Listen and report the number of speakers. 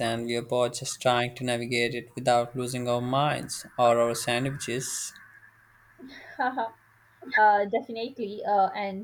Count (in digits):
2